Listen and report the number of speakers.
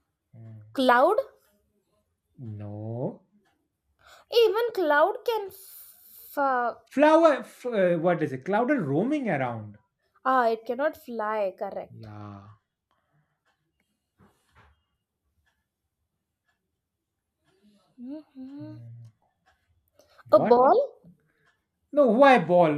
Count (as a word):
two